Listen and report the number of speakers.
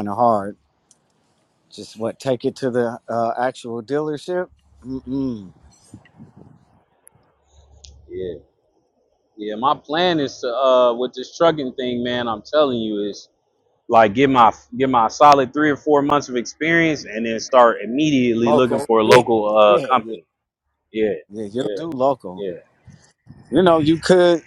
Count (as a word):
two